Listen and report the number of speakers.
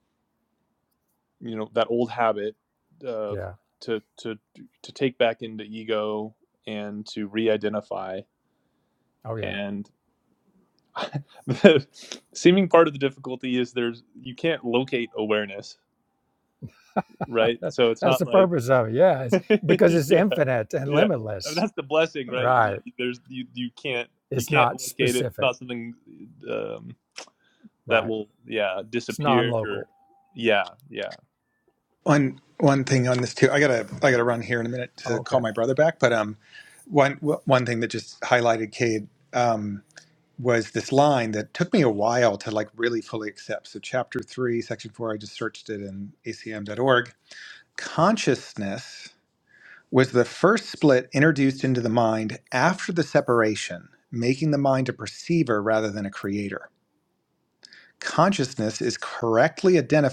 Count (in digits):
3